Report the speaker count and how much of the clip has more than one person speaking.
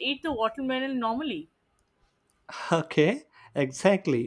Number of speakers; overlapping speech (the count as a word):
two, no overlap